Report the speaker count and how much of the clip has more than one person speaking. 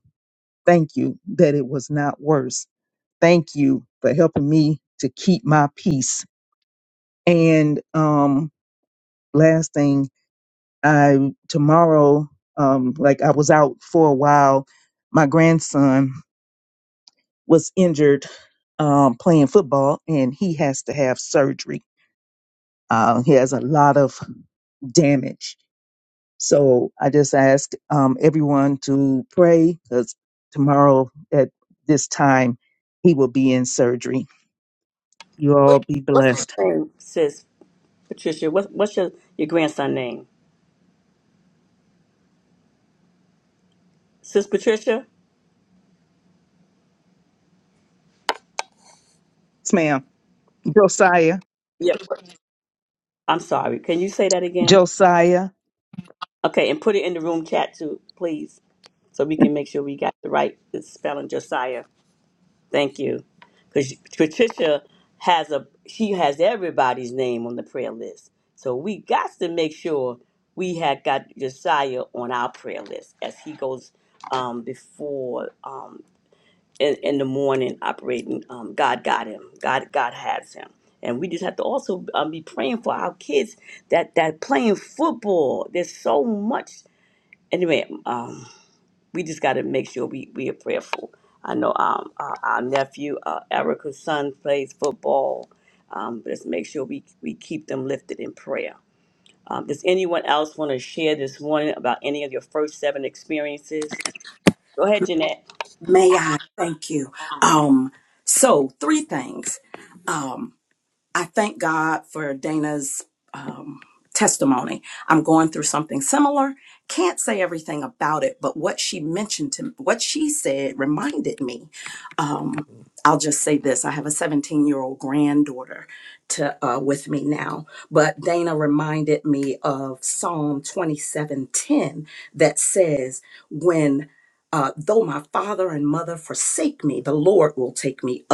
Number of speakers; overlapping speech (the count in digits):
3, under 1%